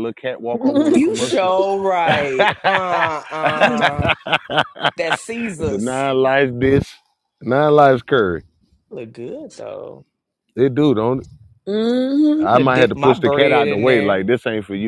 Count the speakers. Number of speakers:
3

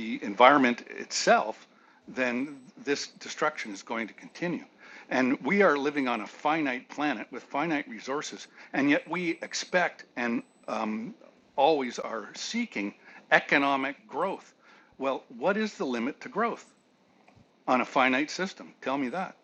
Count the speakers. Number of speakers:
1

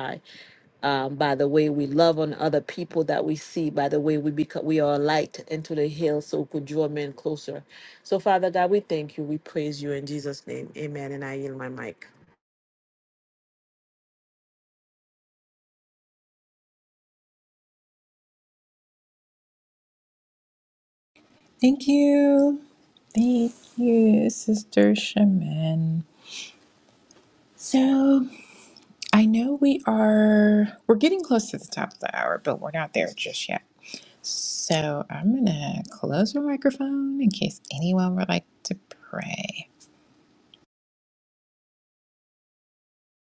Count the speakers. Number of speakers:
2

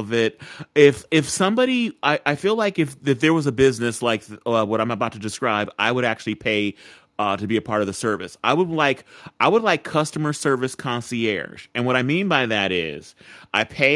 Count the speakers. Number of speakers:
1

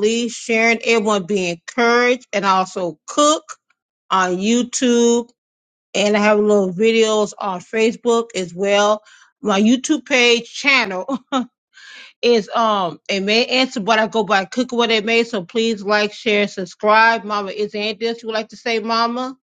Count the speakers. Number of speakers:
1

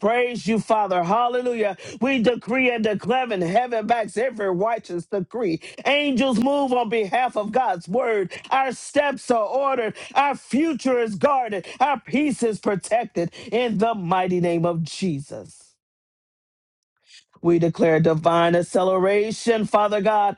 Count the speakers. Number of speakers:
1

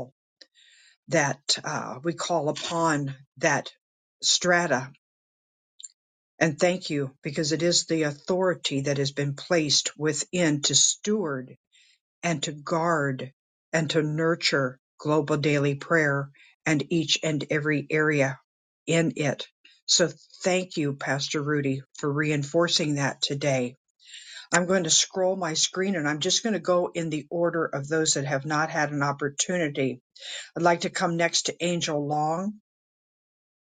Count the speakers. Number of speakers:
1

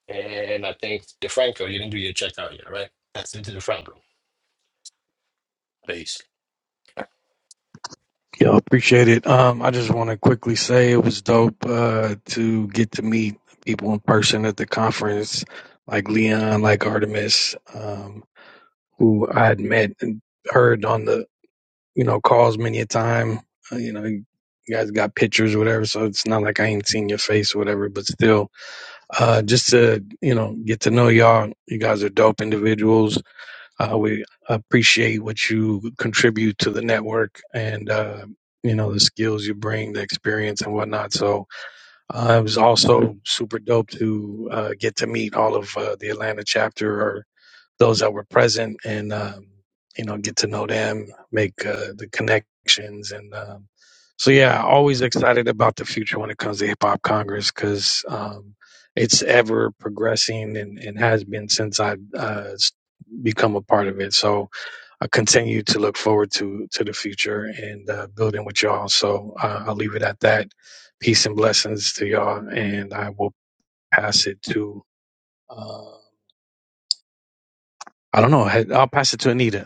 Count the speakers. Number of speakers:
2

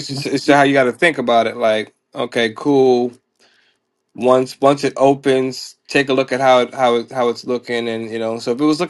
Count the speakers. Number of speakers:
1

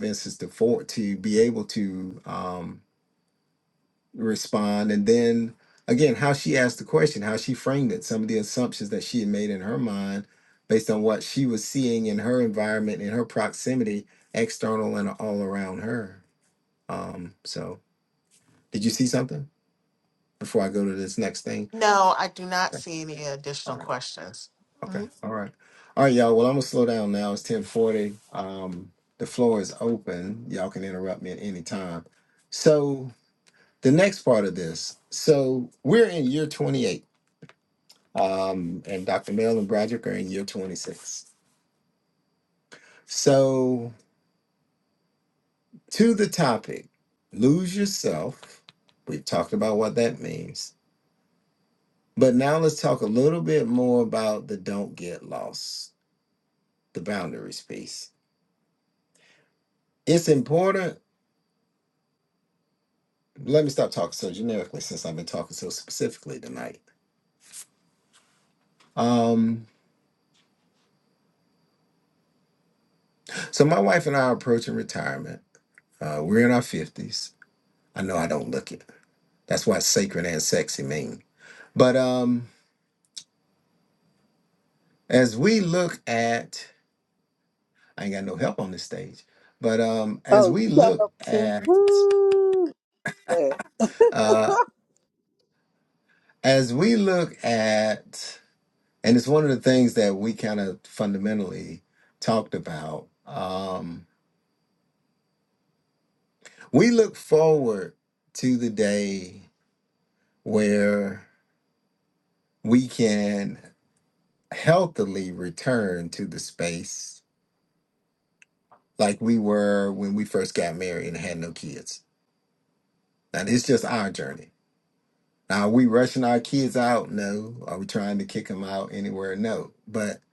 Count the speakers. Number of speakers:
3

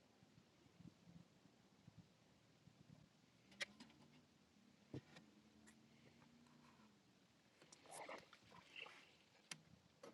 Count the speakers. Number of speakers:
0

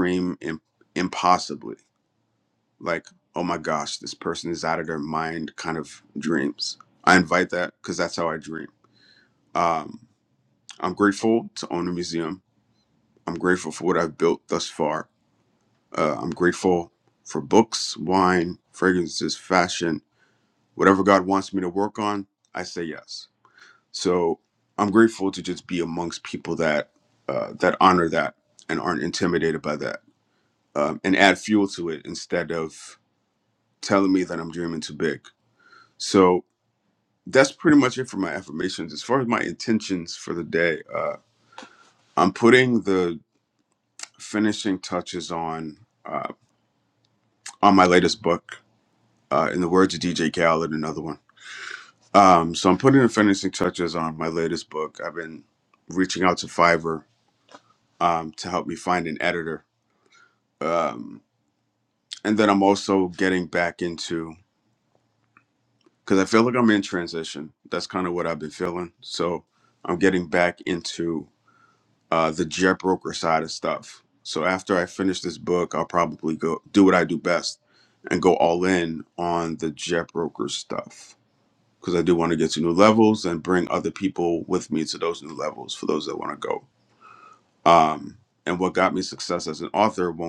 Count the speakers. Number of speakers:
1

